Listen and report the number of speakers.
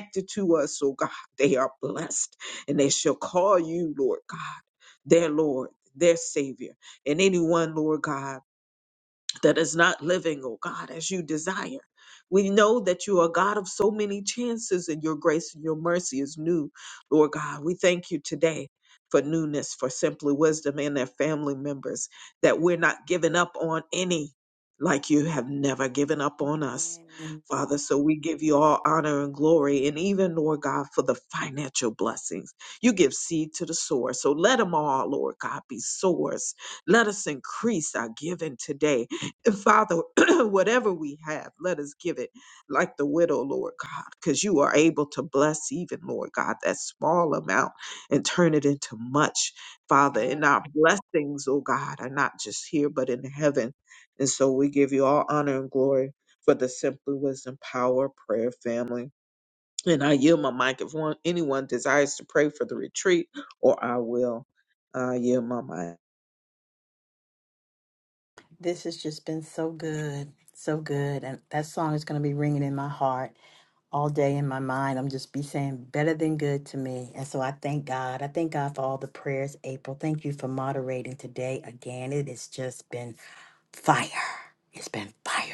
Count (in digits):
2